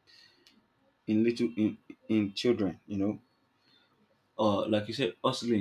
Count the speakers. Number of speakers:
1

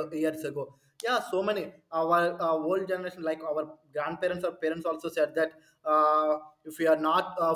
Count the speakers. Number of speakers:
1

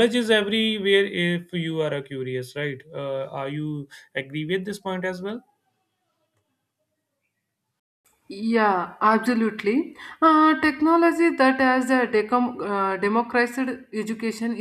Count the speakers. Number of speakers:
2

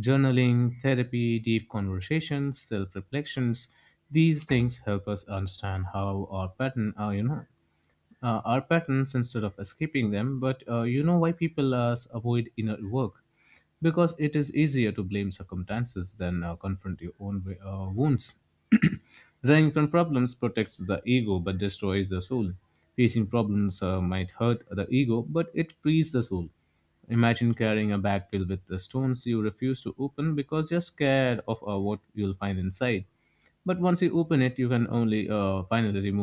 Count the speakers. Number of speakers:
1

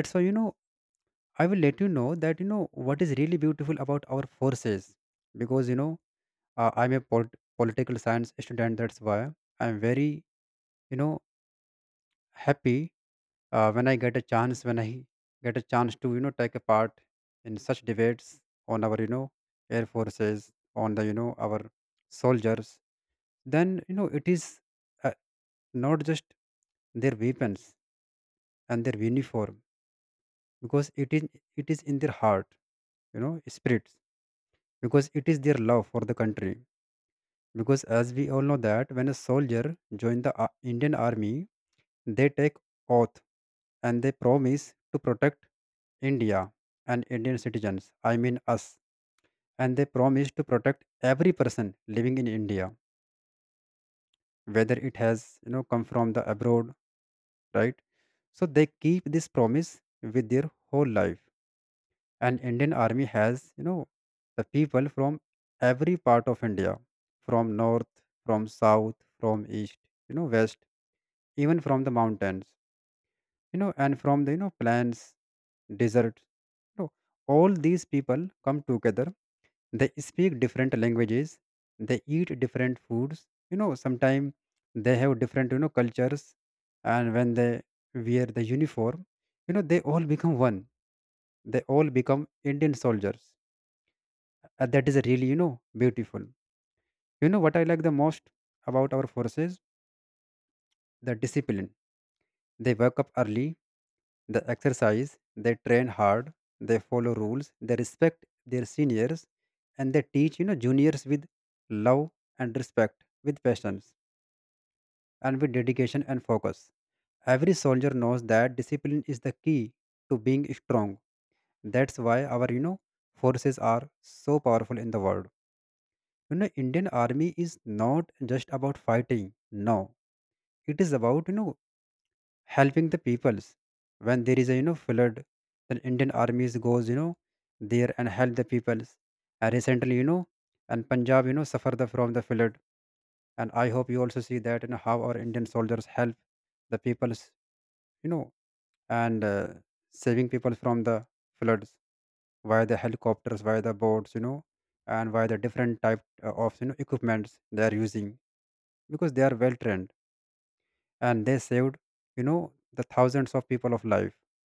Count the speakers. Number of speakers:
1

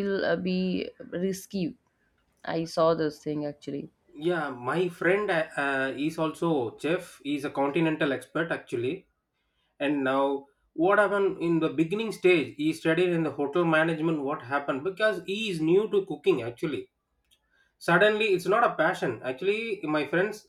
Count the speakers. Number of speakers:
2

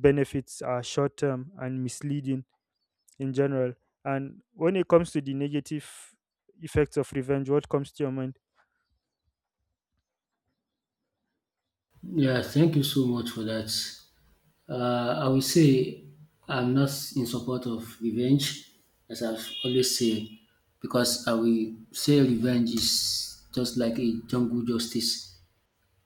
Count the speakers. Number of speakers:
2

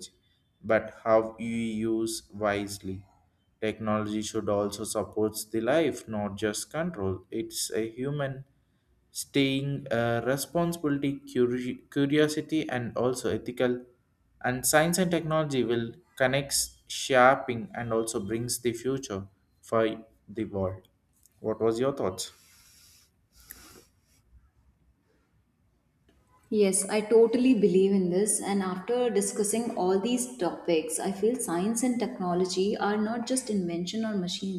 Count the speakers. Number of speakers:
2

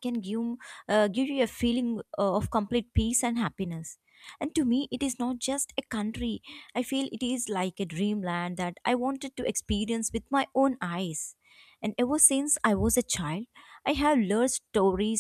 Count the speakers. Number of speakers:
1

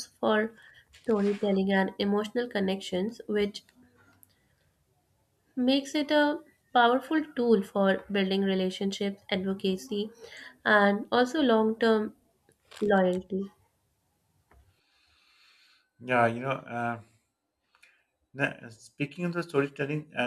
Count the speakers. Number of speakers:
2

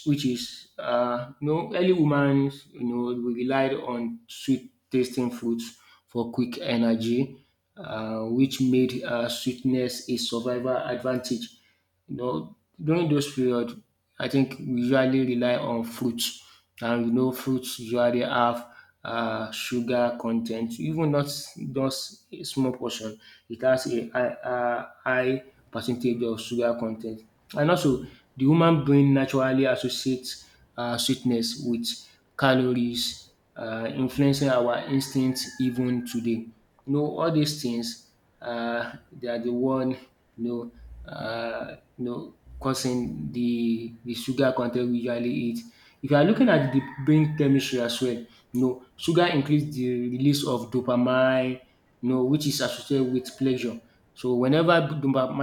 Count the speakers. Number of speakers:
1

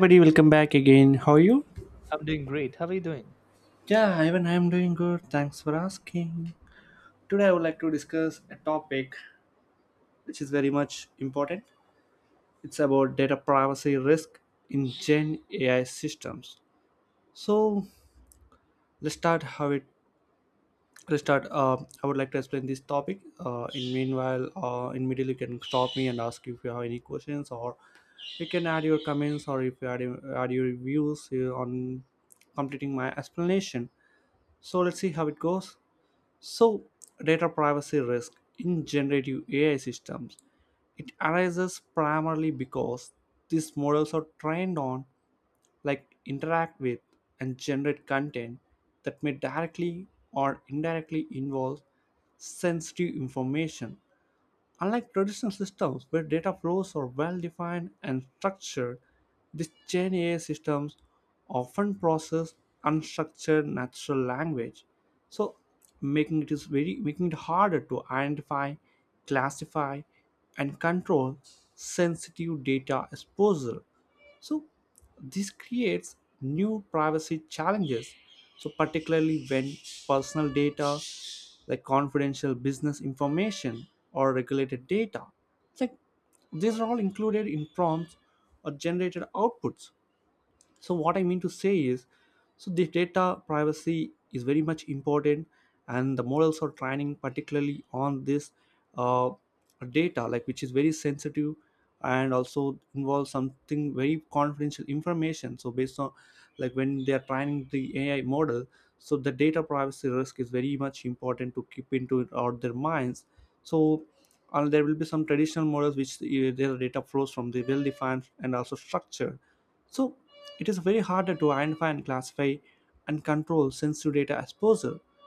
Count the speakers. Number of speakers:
2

